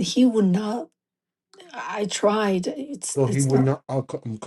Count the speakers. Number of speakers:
2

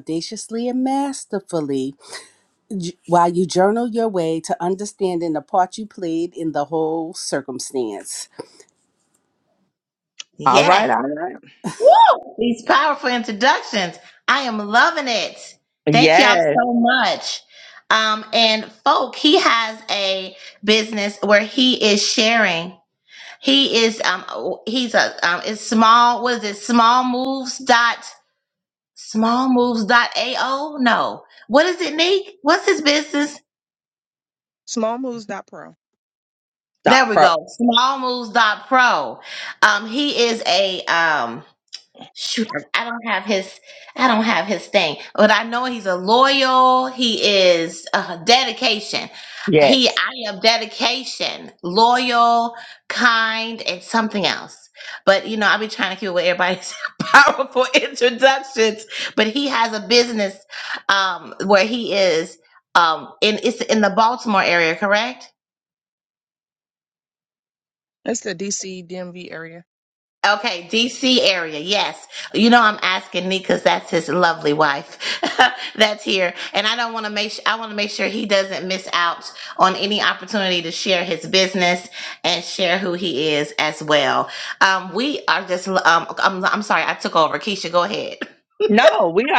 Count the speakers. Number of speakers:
4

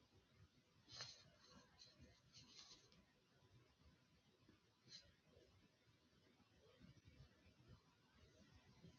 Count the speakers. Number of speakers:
0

